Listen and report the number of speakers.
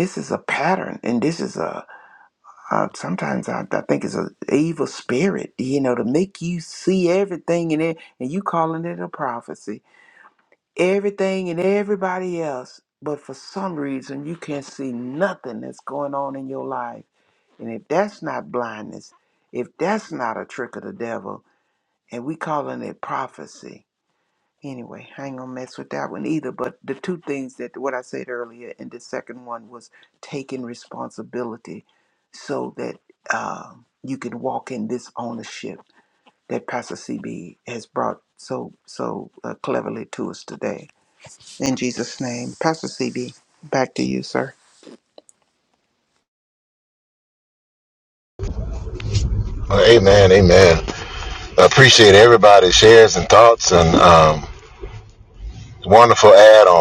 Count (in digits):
2